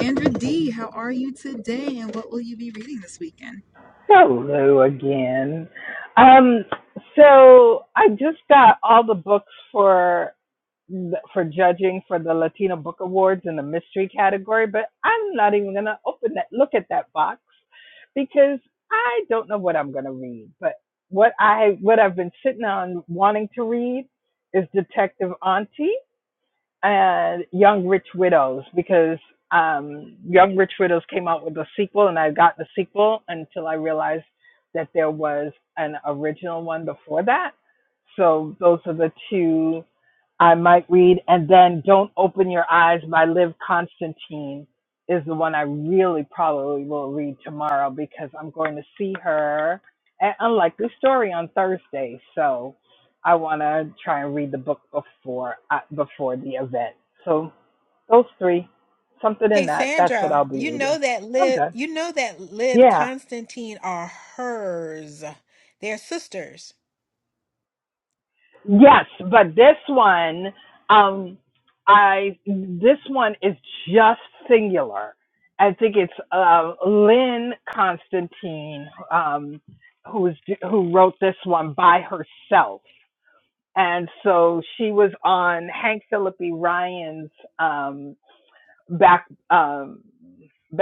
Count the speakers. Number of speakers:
three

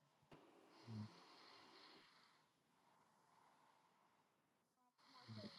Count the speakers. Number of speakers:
zero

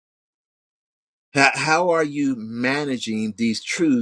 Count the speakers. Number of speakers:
one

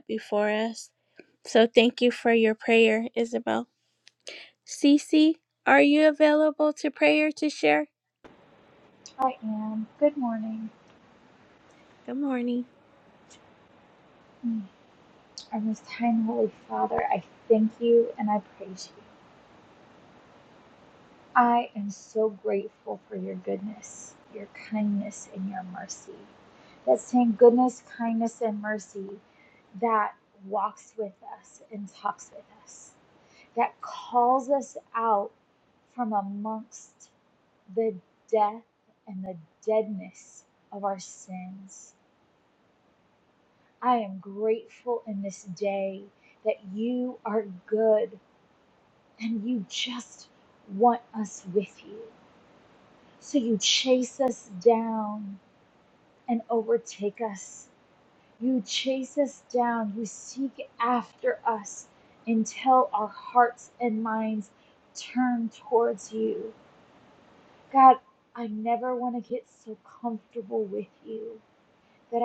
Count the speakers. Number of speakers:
two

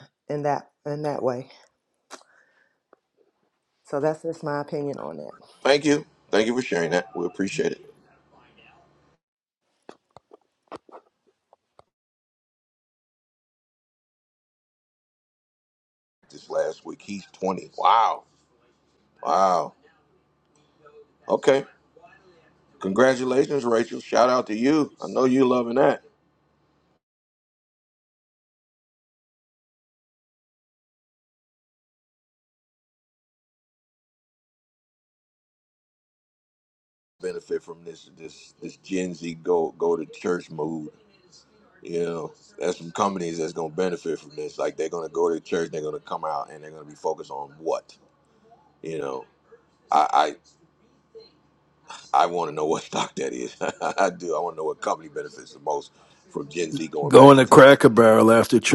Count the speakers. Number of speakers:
three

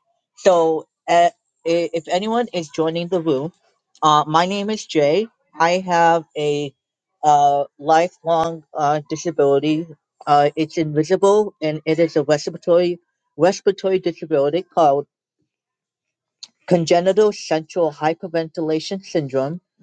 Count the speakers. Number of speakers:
one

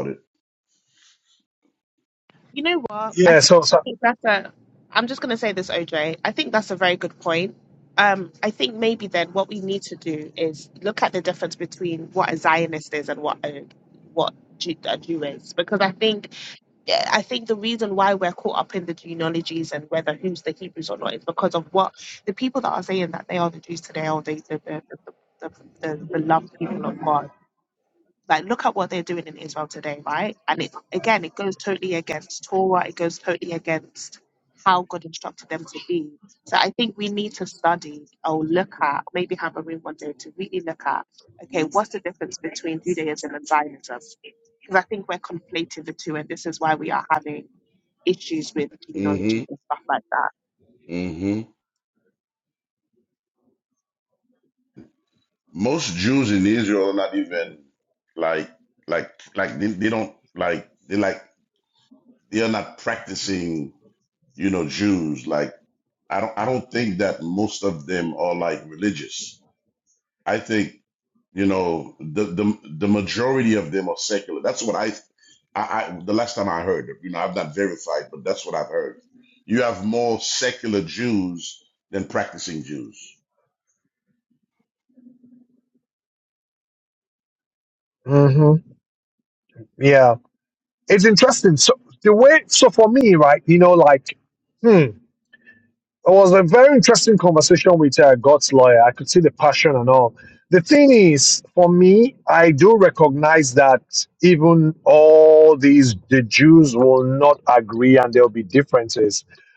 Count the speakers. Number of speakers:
three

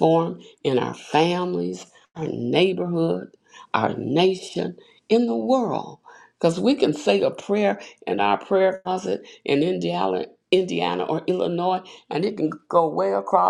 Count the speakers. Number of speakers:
one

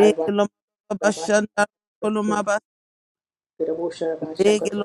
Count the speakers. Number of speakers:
two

